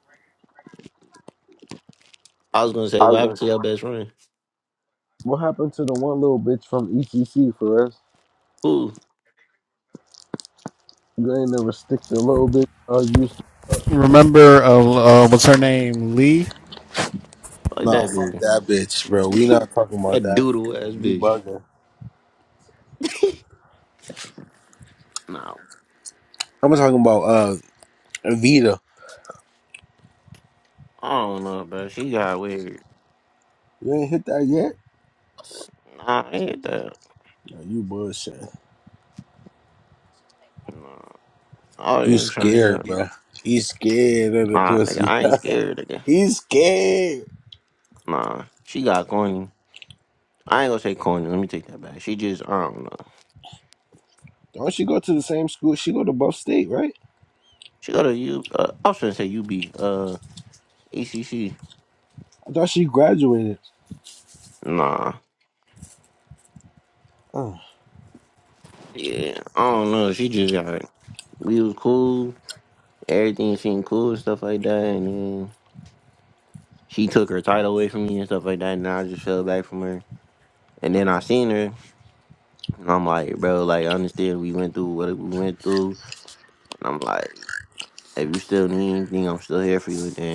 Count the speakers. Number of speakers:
3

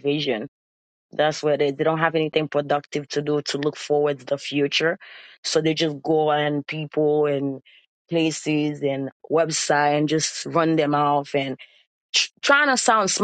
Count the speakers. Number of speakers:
1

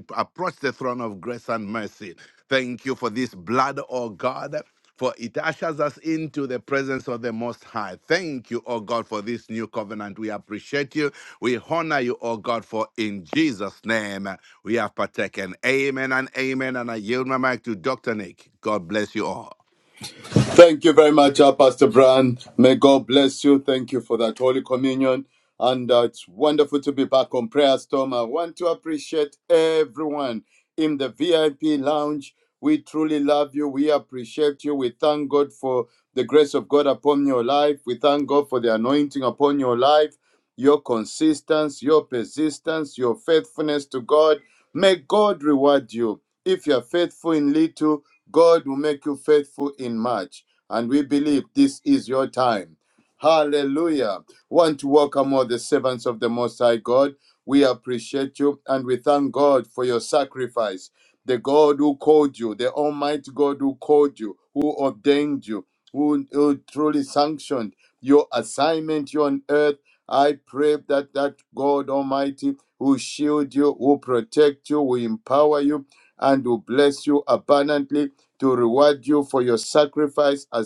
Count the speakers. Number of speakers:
2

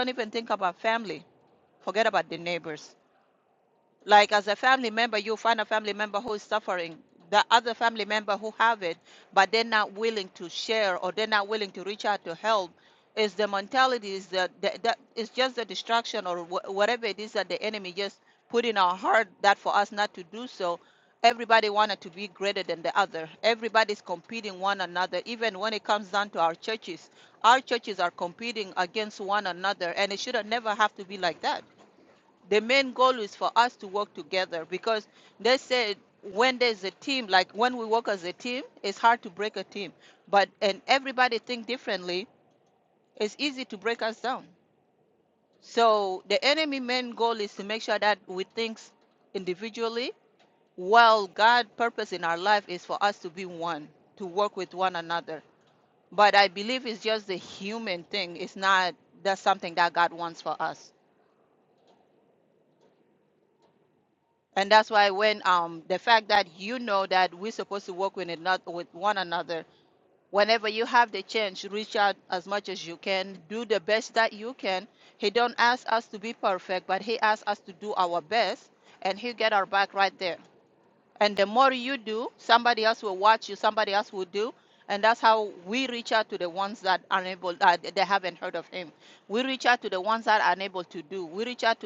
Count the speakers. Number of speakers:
1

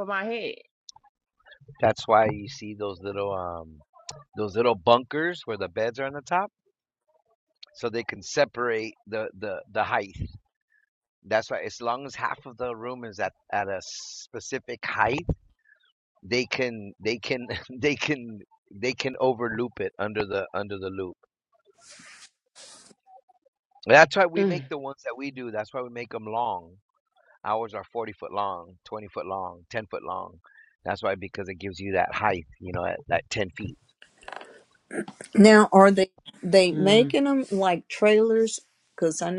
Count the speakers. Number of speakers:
3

